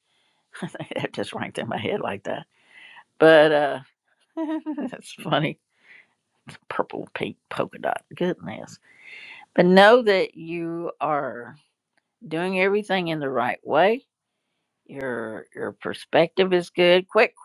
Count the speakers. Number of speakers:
1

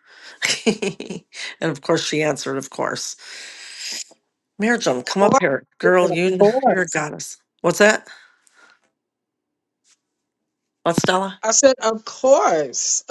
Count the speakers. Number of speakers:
2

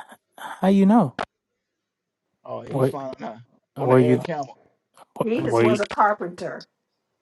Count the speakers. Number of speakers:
3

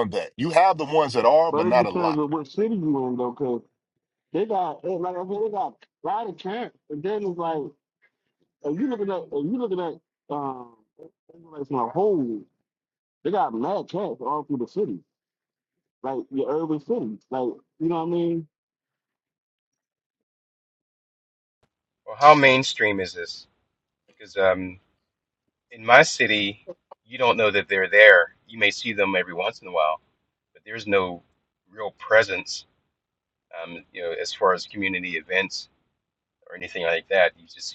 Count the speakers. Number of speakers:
3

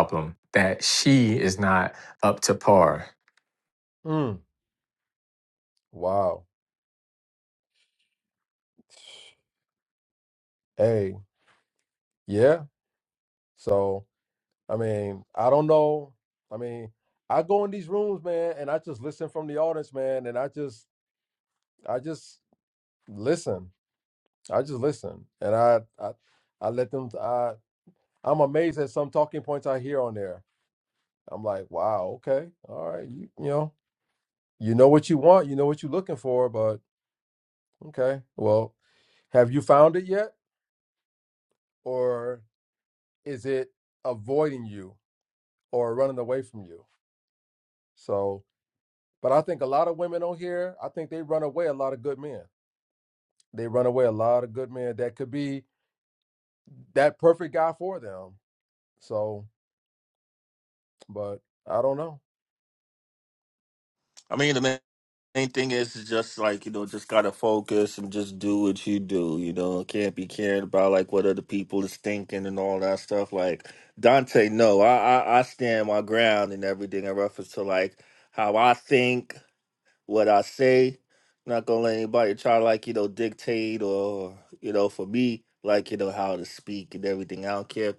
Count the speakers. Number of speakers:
3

